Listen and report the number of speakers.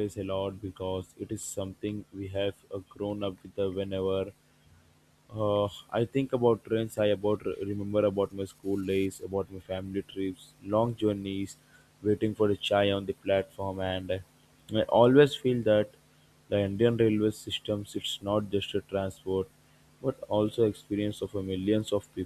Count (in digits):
1